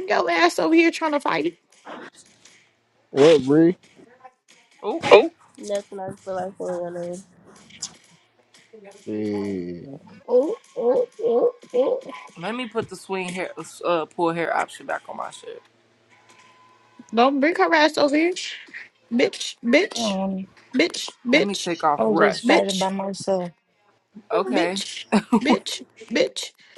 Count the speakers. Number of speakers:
five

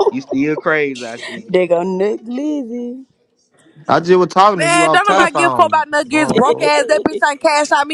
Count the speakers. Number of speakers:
four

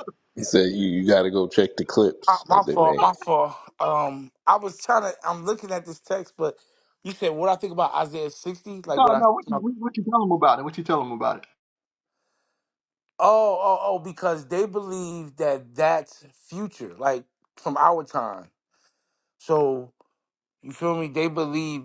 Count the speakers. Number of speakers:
three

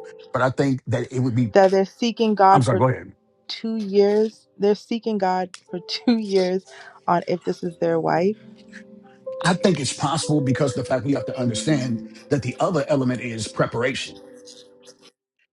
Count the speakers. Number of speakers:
two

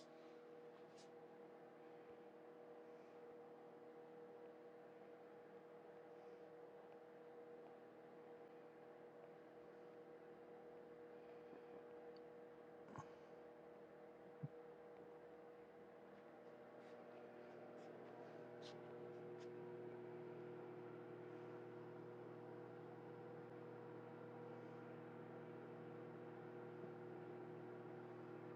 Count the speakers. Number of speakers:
zero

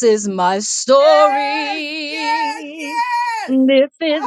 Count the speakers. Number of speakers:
two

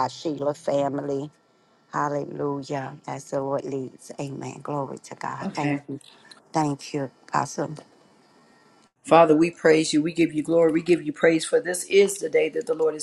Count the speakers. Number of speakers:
two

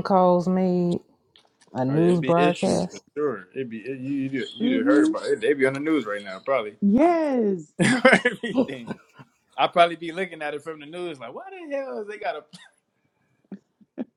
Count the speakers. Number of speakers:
three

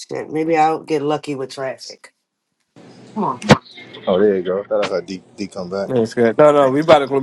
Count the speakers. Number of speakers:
three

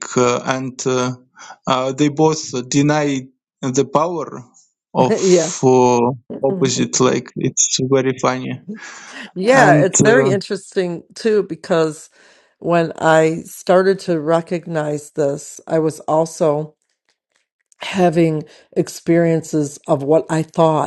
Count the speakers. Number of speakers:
two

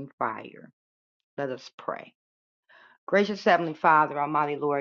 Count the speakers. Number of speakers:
one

